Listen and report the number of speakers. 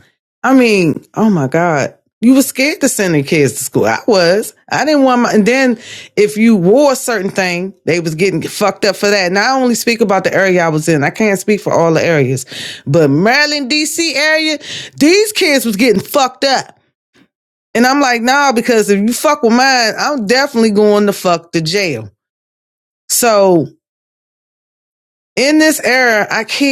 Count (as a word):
one